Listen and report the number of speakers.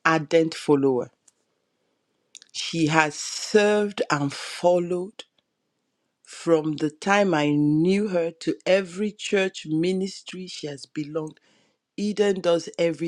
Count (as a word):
one